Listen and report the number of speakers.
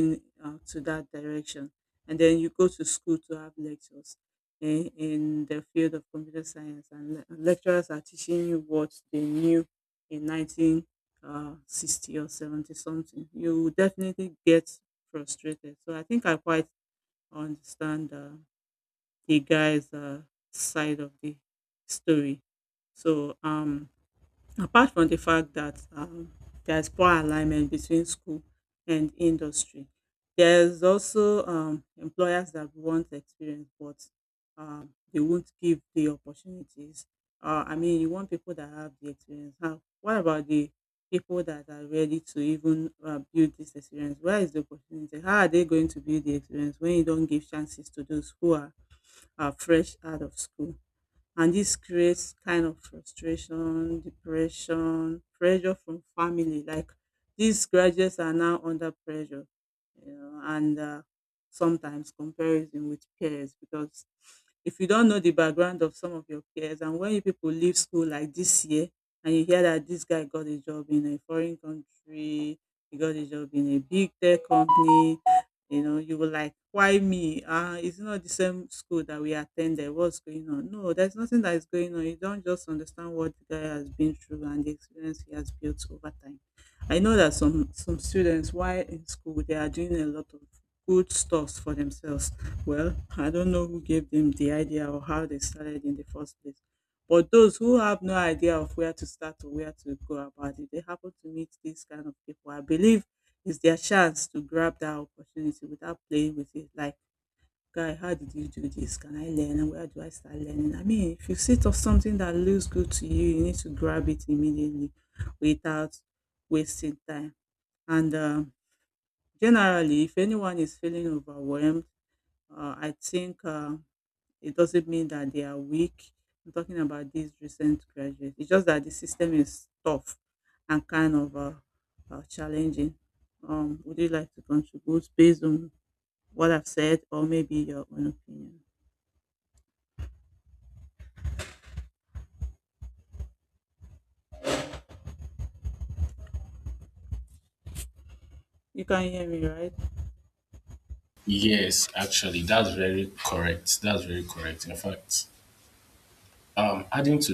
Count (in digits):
2